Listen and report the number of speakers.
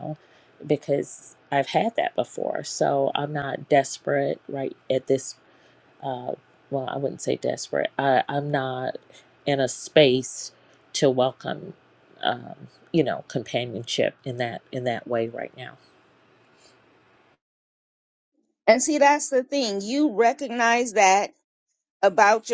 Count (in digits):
2